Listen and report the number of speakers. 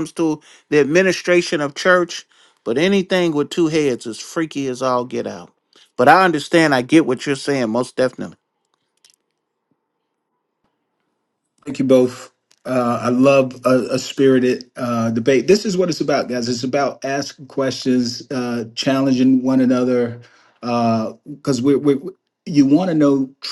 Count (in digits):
2